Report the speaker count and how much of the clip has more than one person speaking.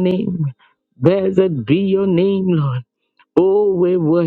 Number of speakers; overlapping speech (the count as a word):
one, no overlap